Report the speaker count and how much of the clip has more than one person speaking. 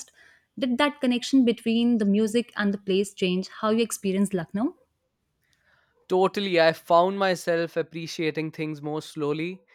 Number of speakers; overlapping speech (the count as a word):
two, no overlap